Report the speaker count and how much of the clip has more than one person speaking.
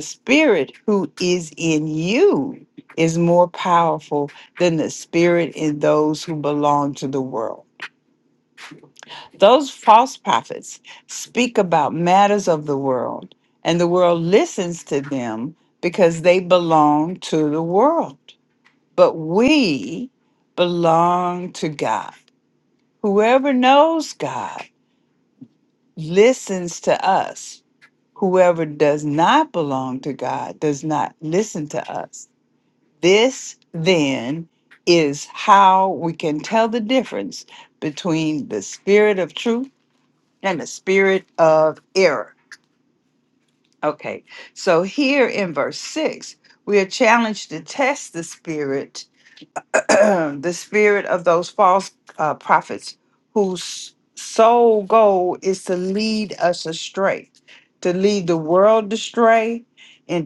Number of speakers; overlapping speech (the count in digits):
1, no overlap